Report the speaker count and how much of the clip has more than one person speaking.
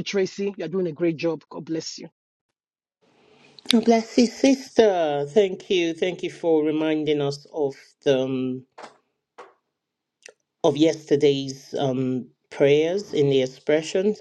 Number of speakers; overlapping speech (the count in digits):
2, no overlap